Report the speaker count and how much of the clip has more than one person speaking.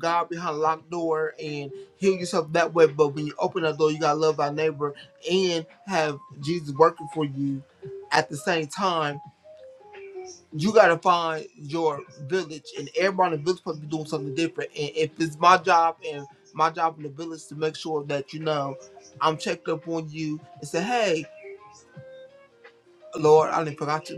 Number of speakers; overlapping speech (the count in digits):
1, no overlap